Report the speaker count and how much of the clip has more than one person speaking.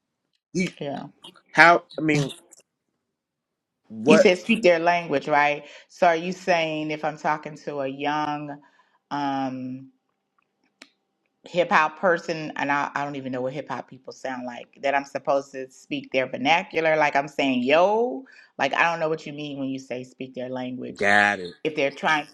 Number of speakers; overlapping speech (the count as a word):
two, about 1%